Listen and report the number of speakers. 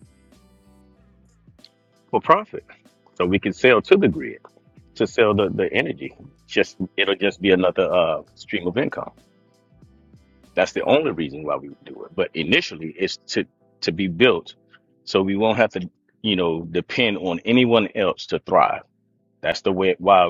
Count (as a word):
one